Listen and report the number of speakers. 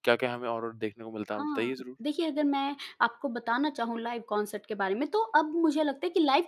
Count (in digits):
2